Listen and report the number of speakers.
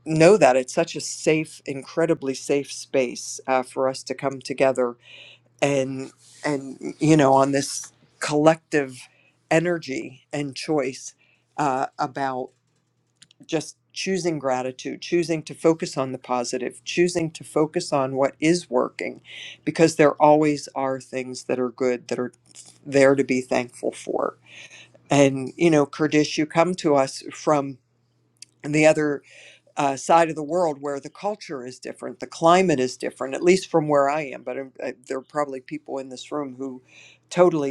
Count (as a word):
one